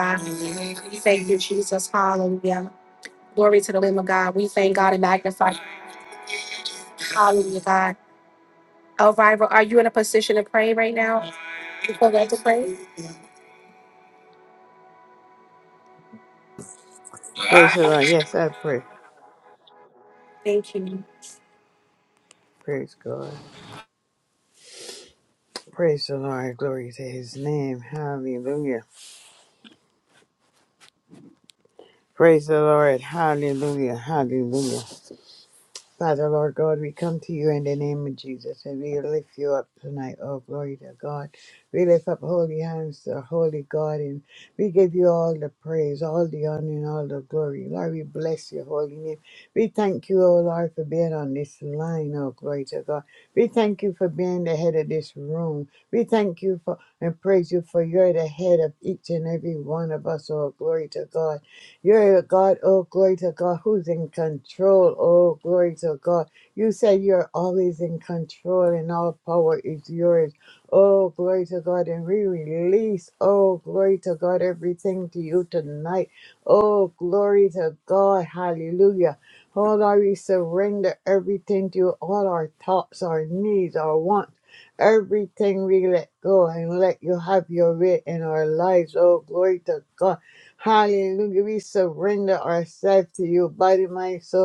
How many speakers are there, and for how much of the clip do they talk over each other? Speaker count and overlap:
2, no overlap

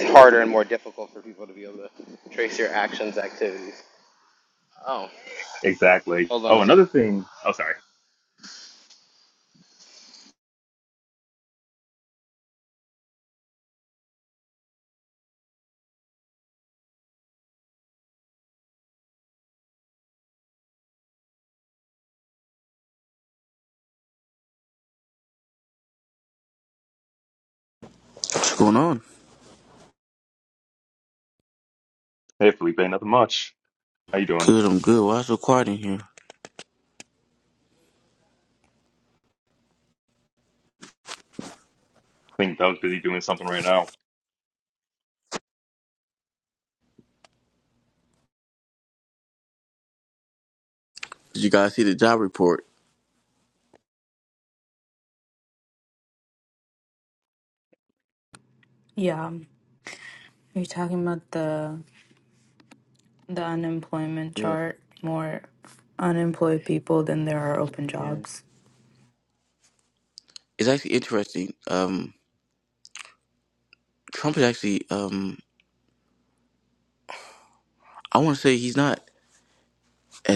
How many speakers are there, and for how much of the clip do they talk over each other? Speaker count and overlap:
4, about 1%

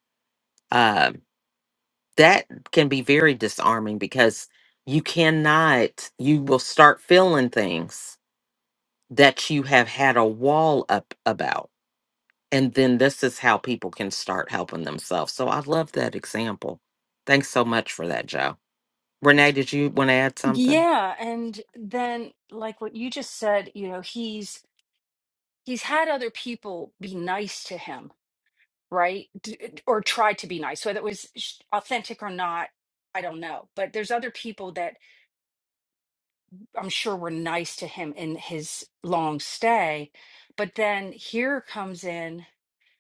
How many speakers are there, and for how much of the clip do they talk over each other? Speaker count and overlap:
2, about 1%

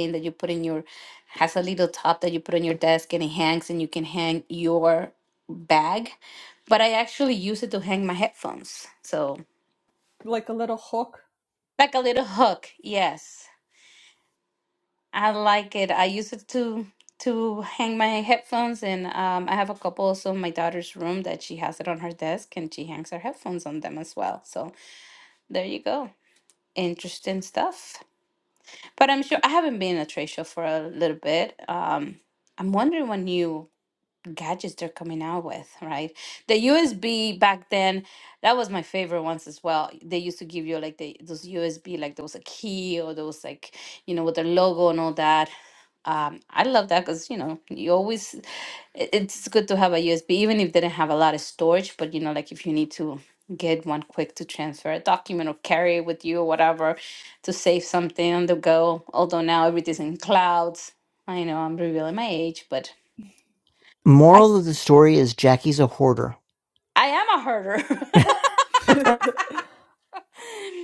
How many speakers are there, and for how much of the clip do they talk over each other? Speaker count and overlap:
3, under 1%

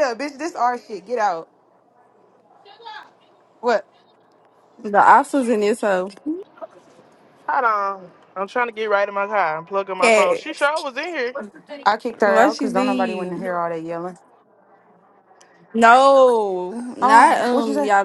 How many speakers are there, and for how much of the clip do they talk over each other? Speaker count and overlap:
3, about 14%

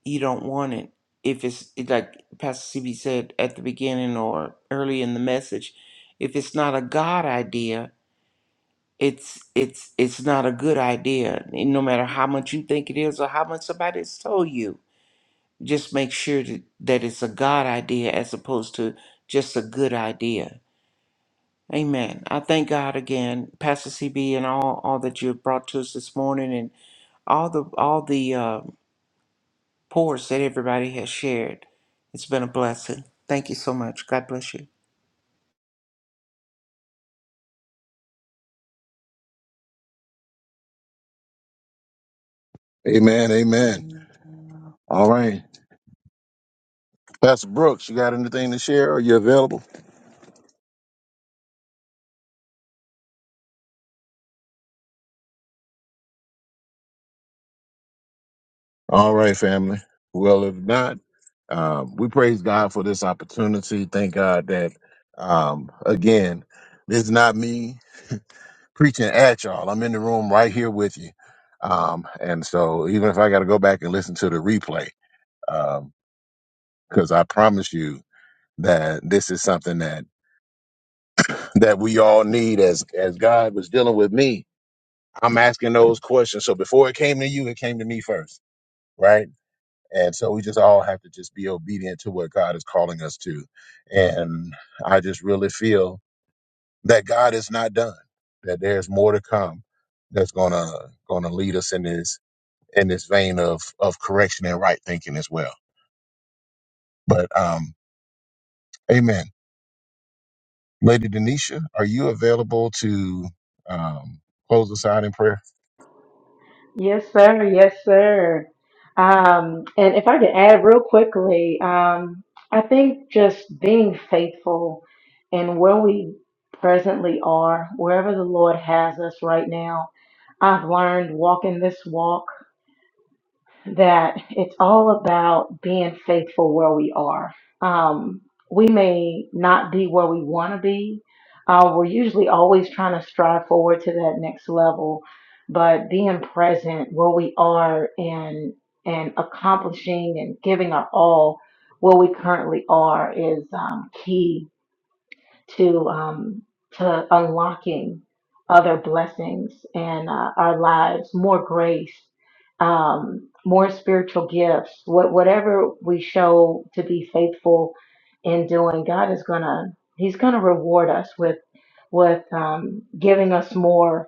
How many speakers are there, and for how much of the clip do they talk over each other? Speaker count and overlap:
3, no overlap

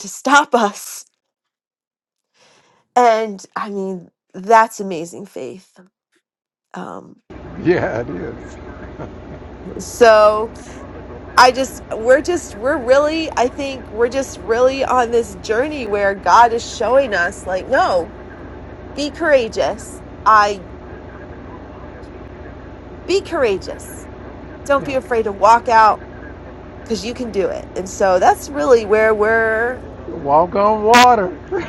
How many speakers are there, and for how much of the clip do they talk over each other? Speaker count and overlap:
2, under 1%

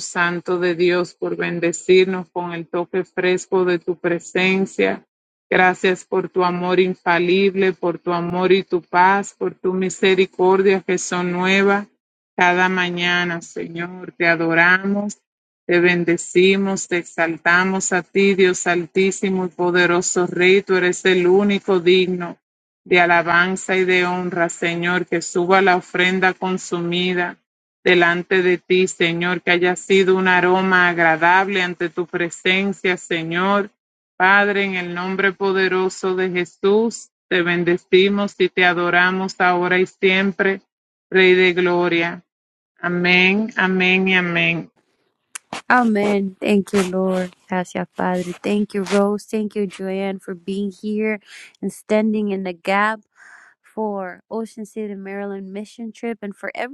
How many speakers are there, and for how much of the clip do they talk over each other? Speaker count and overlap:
2, no overlap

